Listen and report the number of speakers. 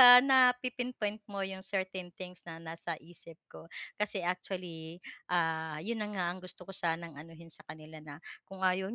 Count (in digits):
1